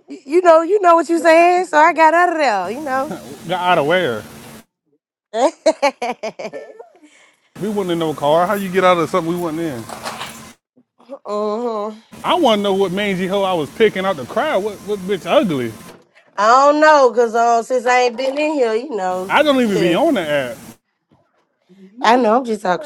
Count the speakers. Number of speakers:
two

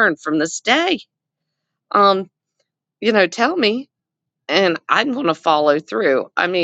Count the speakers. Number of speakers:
one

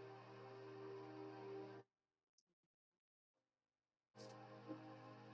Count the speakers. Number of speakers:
zero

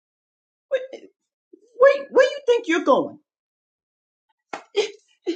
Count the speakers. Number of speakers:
one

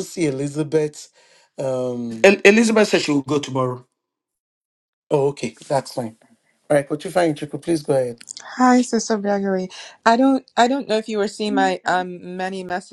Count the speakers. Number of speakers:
three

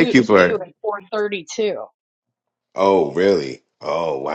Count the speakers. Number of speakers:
two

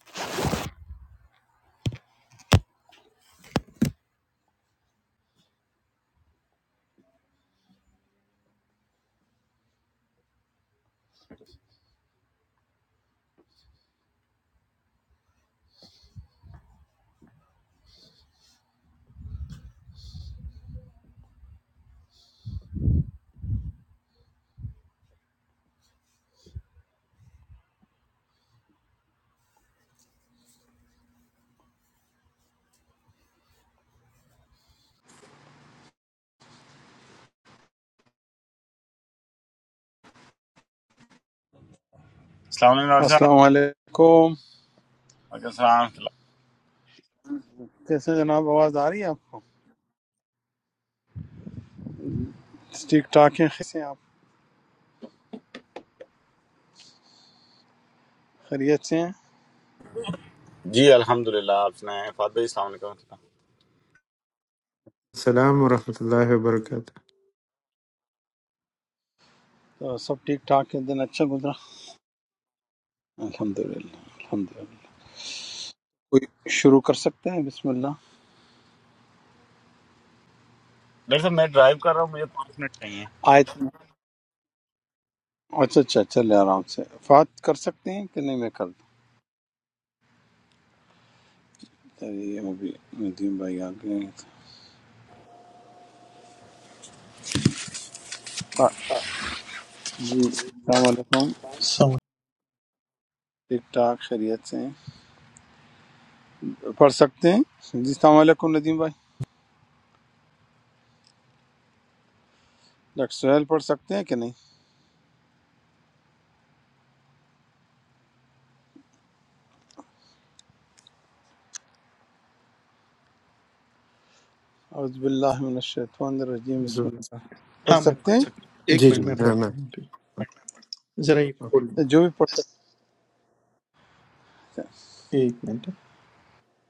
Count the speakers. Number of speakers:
four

